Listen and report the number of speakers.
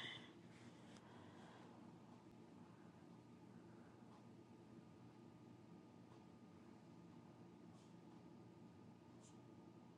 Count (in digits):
0